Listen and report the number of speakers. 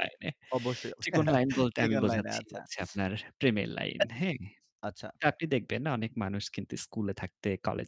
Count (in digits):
2